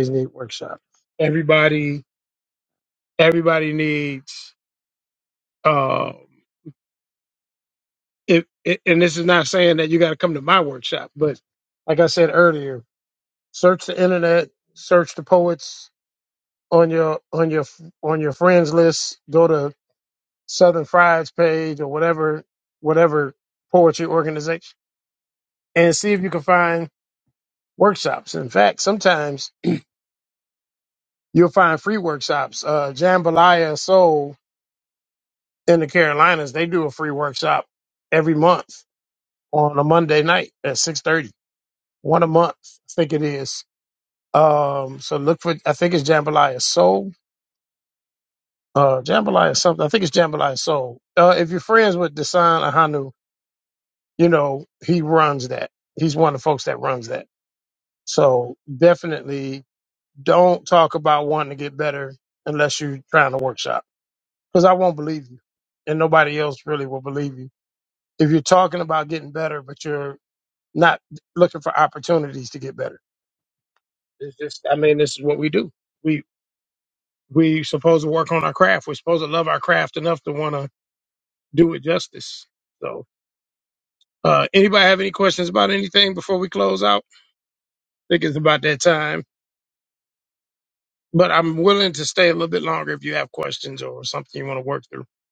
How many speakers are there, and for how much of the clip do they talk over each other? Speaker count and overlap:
one, no overlap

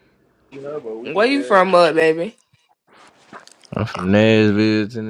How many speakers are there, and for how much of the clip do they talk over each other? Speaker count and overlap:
three, about 10%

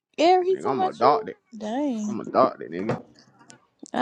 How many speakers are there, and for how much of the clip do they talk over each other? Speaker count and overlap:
two, about 19%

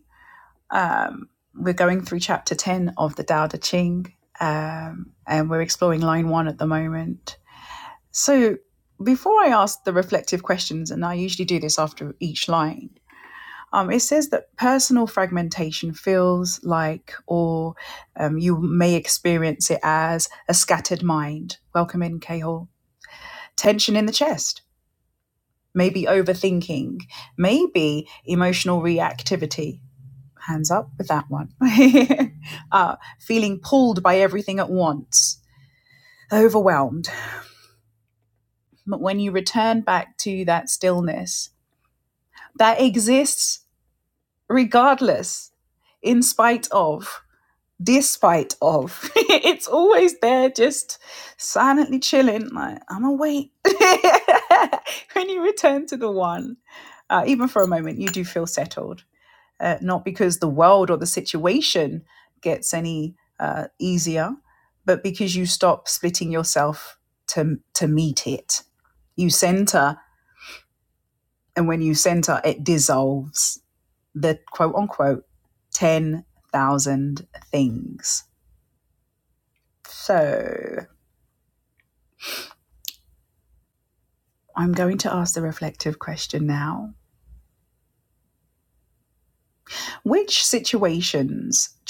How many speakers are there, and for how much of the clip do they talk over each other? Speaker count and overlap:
one, no overlap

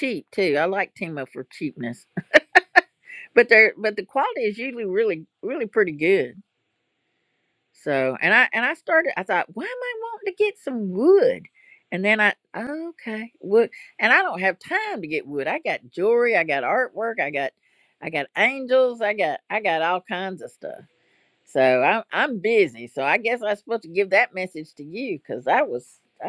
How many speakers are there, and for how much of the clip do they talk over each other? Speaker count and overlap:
one, no overlap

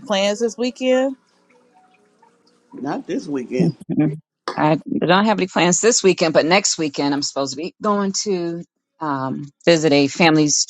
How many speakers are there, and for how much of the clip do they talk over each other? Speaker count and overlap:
three, no overlap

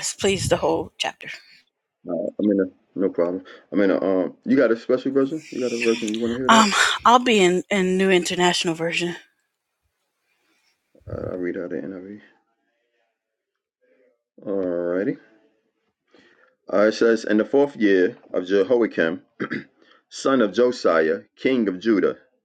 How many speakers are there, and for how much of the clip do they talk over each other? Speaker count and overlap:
two, about 1%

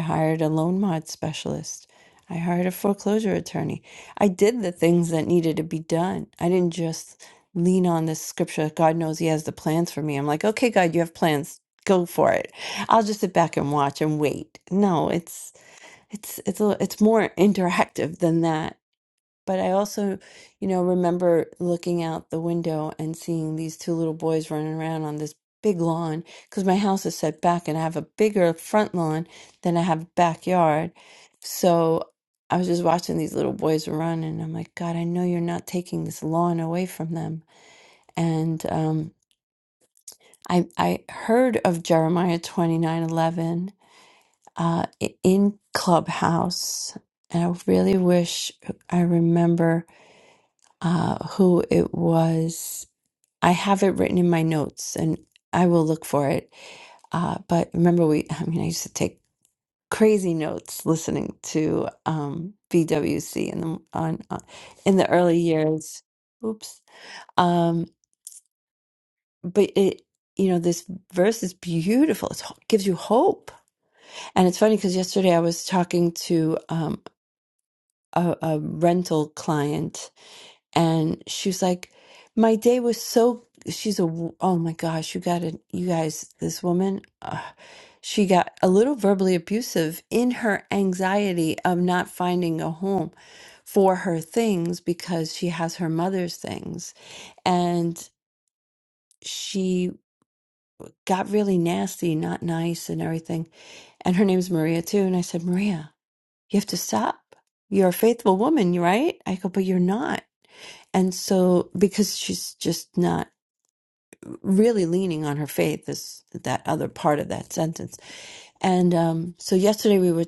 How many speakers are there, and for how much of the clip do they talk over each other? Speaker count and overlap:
one, no overlap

